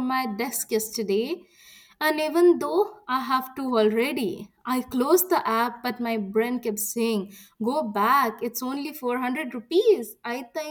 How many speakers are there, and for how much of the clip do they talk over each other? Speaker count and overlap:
one, no overlap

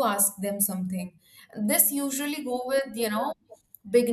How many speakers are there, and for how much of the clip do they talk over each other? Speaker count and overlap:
one, no overlap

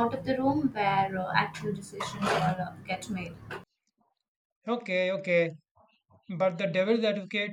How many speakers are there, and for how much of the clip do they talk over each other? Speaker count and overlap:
two, no overlap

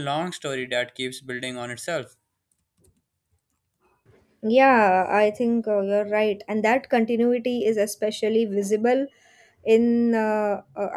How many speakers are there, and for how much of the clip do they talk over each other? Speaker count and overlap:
two, no overlap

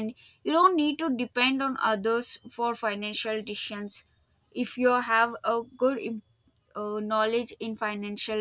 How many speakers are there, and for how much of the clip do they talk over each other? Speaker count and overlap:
one, no overlap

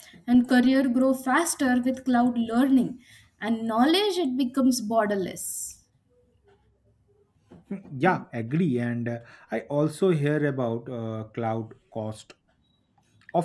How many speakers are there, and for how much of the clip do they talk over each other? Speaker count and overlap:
two, no overlap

